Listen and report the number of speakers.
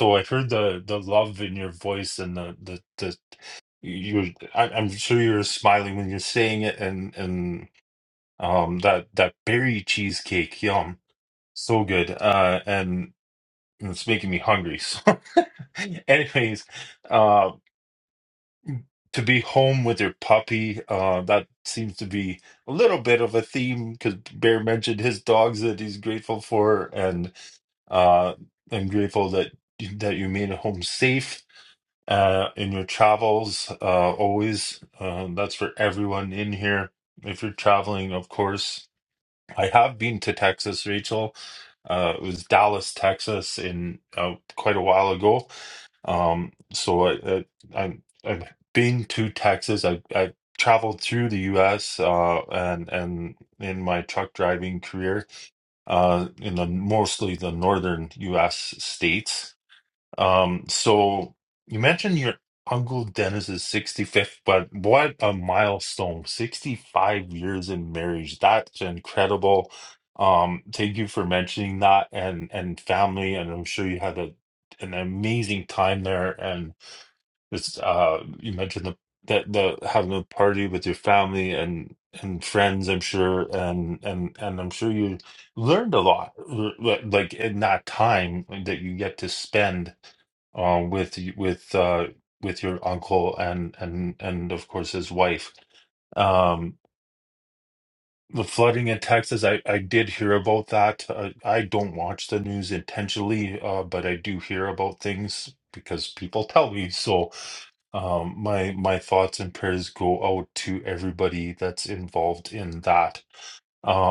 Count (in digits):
1